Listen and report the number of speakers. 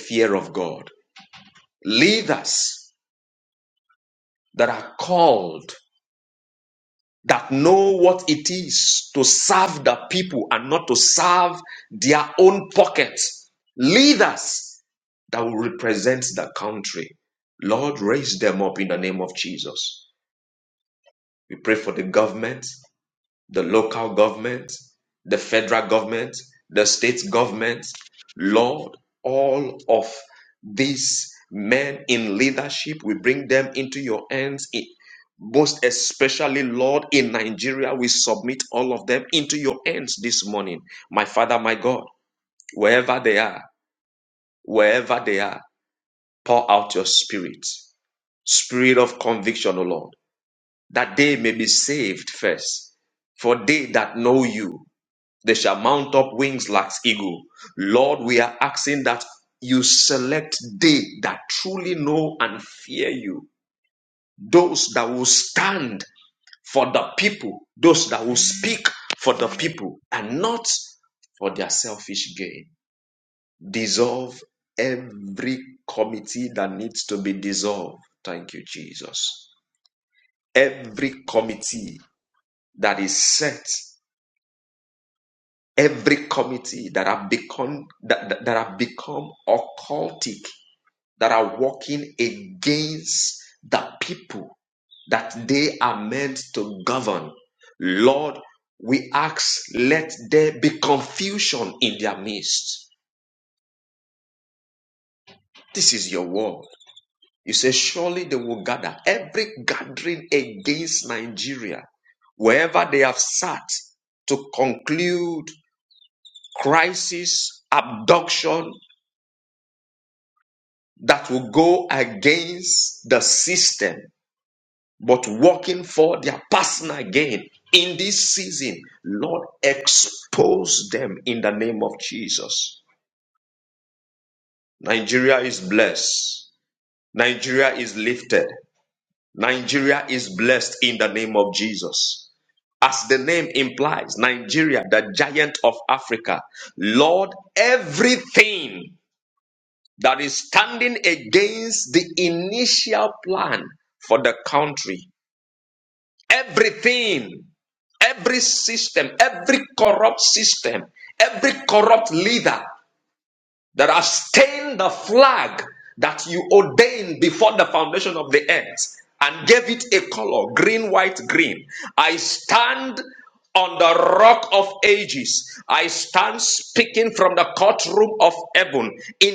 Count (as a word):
one